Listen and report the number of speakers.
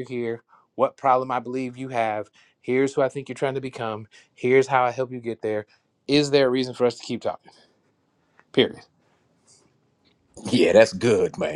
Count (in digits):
2